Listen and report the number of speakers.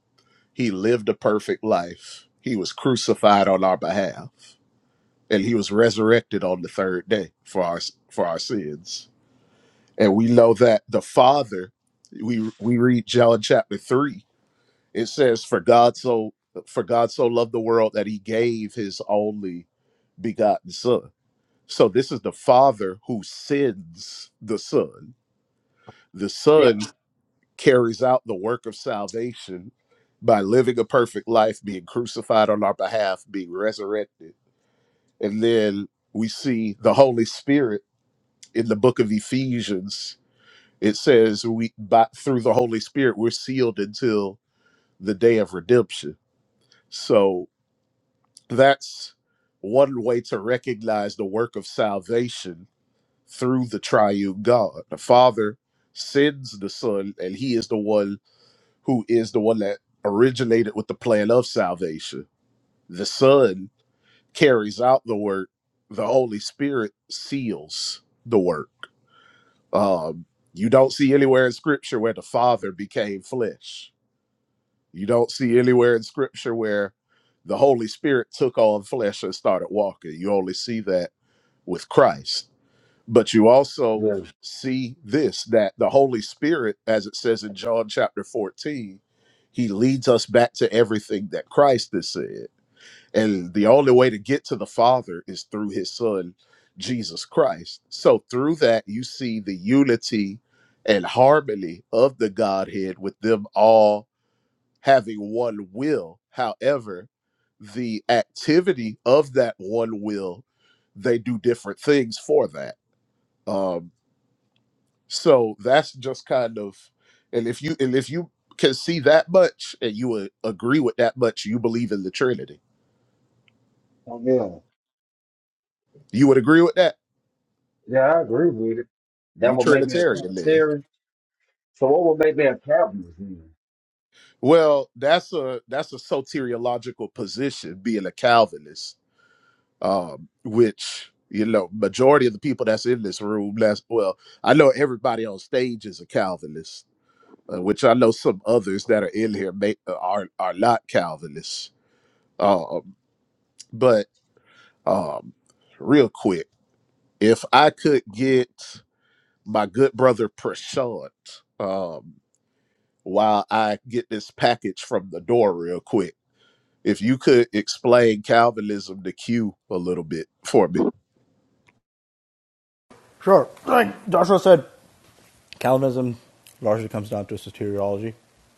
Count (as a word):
three